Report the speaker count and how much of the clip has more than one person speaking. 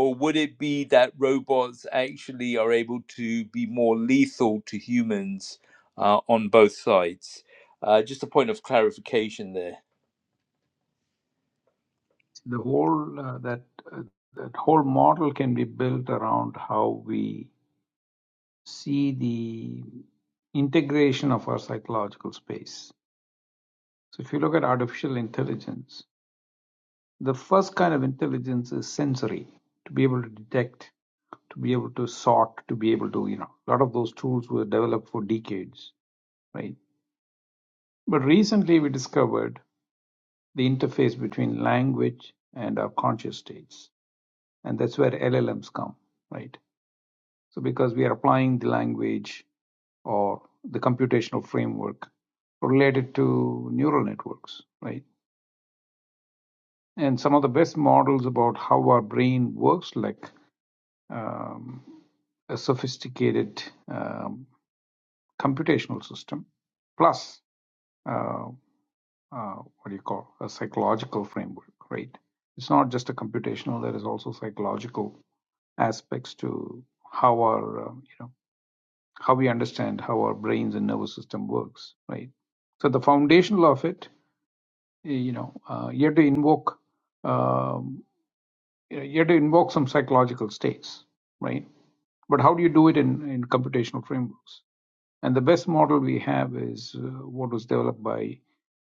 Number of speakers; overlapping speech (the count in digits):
2, no overlap